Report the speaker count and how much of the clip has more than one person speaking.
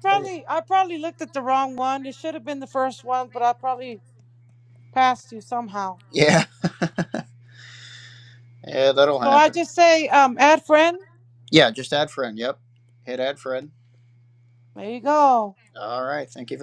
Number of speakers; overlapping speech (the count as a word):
two, about 2%